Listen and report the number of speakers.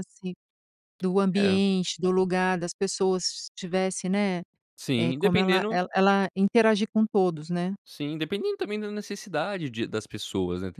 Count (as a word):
two